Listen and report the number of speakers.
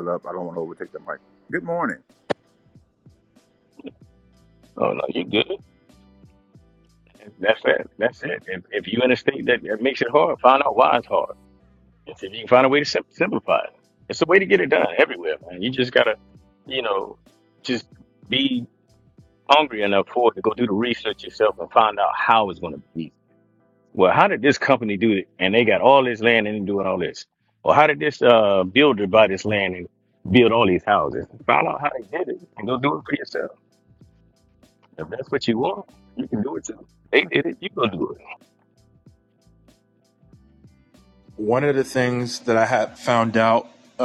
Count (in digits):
3